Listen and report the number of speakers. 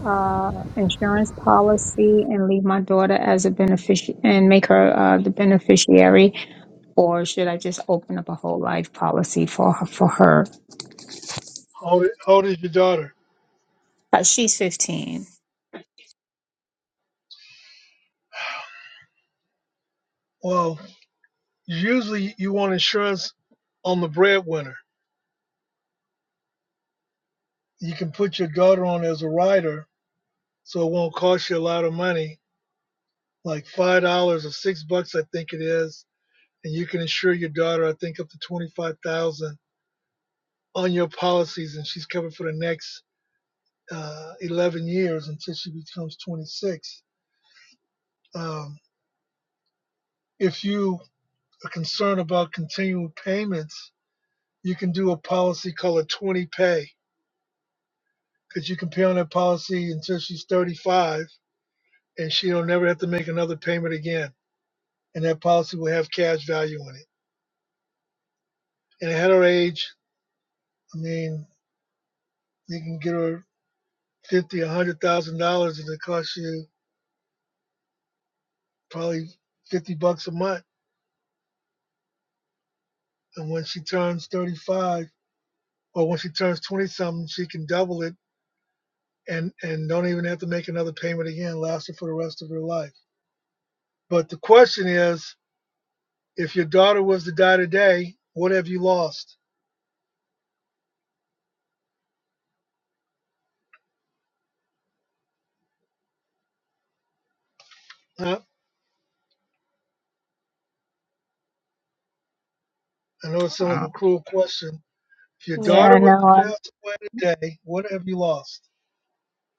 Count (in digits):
2